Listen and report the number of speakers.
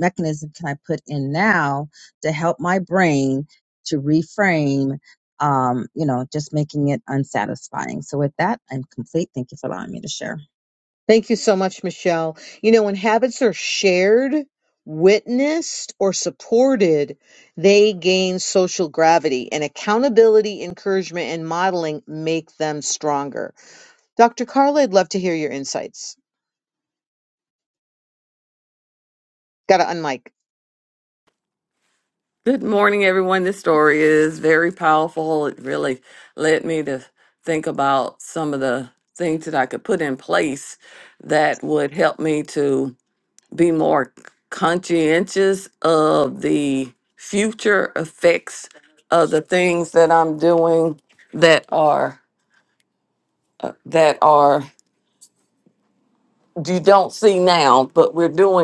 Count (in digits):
3